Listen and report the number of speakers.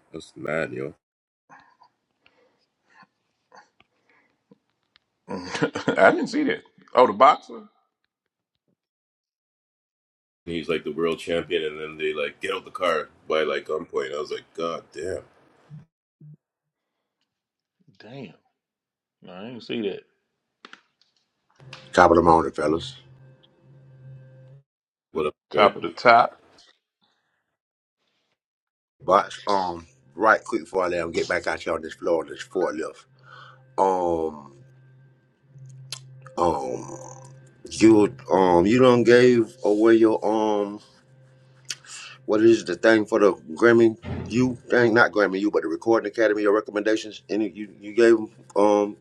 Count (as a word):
three